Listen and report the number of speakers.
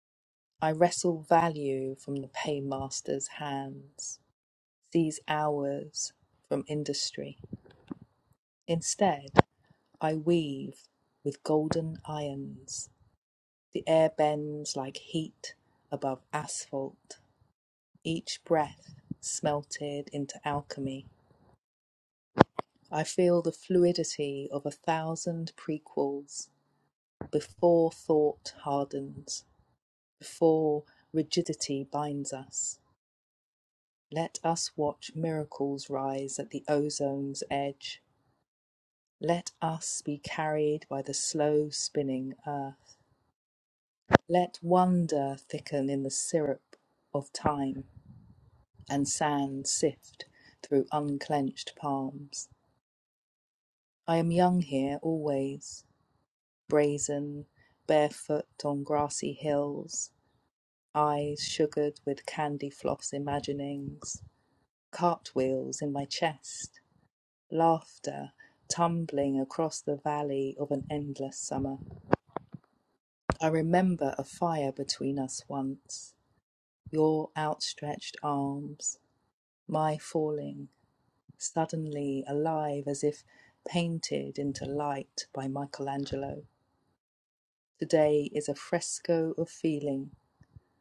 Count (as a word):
one